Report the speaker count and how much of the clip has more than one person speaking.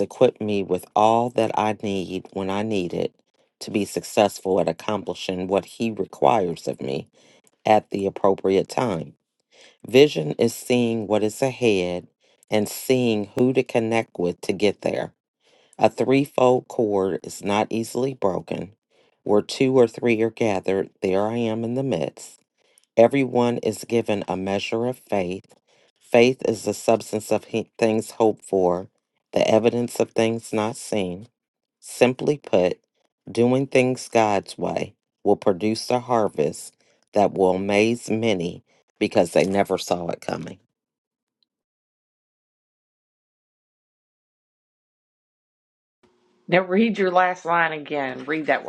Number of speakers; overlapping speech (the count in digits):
2, no overlap